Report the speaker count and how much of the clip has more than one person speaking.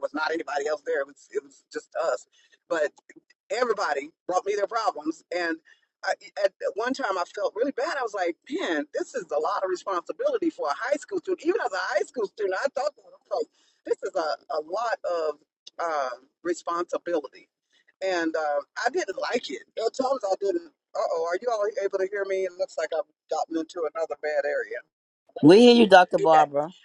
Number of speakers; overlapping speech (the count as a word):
two, about 1%